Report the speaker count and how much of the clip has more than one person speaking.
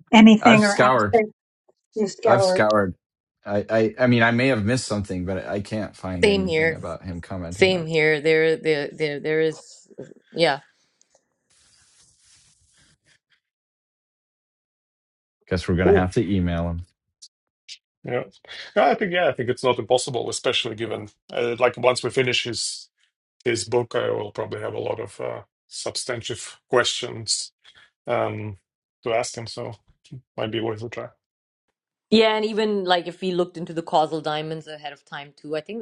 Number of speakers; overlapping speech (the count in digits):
4, about 6%